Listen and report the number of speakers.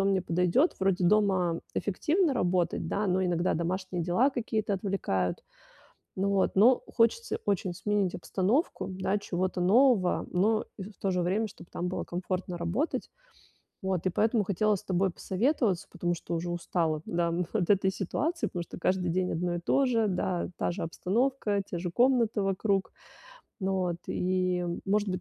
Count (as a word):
one